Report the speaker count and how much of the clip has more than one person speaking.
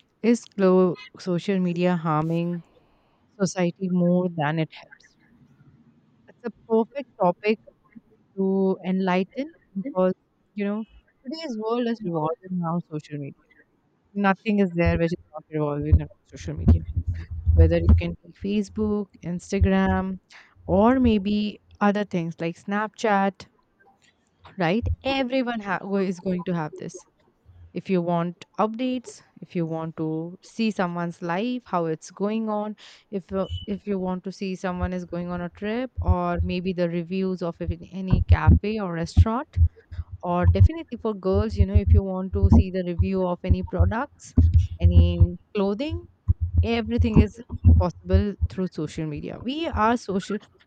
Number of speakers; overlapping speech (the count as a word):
one, no overlap